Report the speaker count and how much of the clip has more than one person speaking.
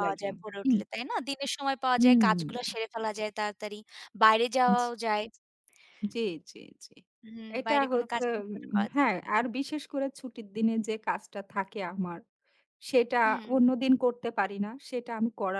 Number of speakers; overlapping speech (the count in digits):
2, about 16%